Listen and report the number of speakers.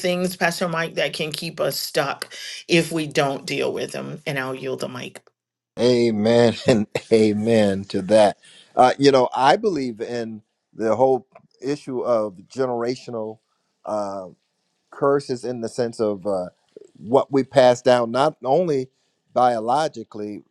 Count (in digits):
2